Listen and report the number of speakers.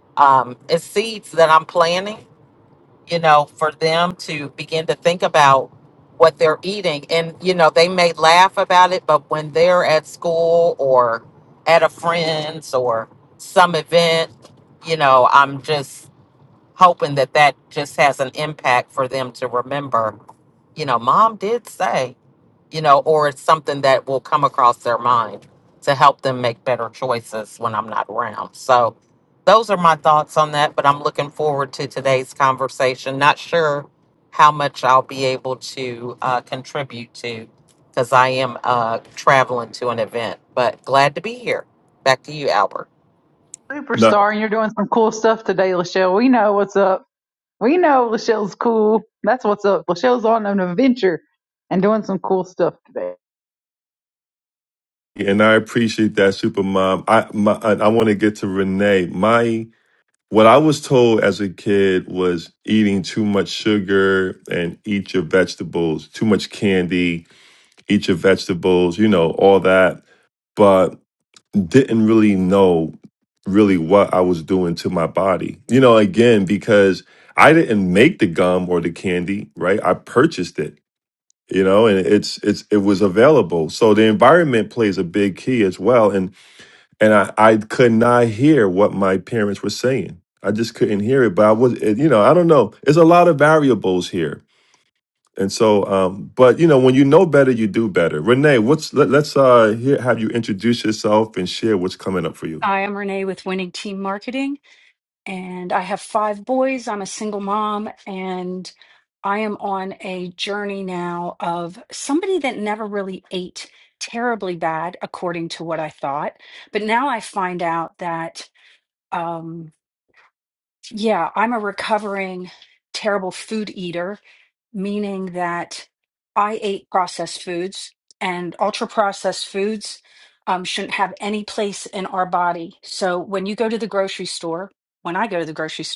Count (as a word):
four